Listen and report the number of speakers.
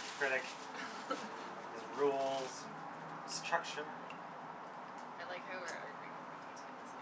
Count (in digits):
2